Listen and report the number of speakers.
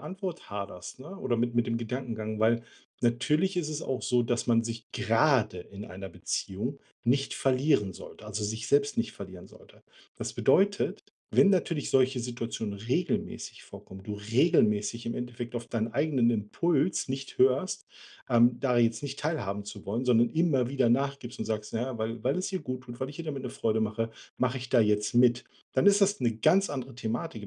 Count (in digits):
1